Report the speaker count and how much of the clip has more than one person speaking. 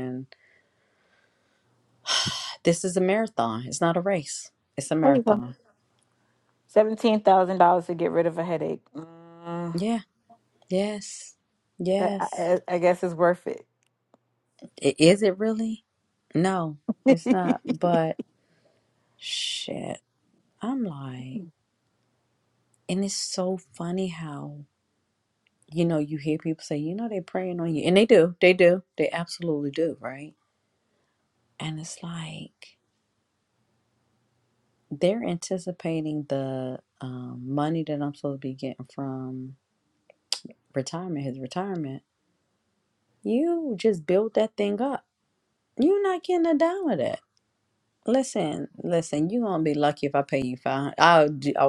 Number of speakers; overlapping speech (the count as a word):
two, under 1%